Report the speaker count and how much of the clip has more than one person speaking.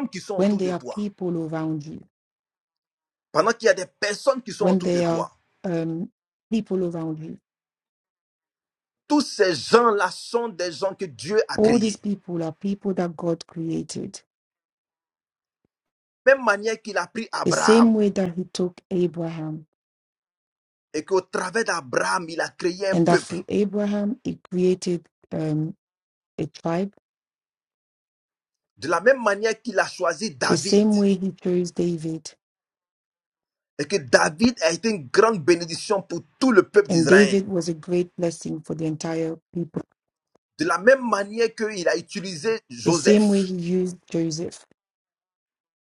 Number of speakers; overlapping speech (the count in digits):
2, about 9%